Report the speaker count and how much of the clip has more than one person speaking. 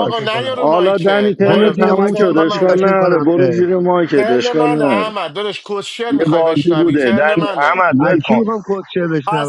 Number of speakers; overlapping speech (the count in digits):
3, about 73%